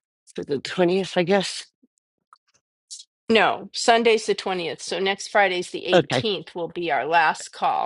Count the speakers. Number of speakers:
2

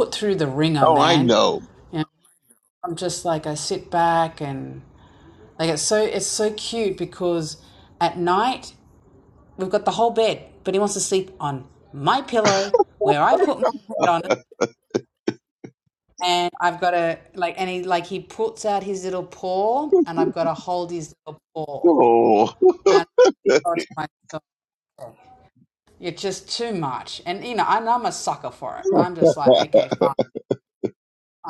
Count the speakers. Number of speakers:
2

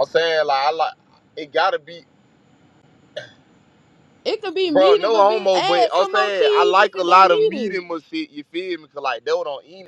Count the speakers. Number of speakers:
2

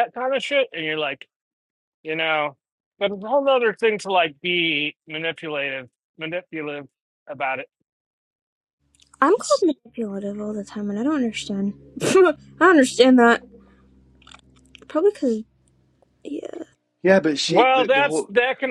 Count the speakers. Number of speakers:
3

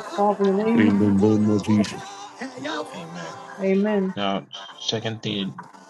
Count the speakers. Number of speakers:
3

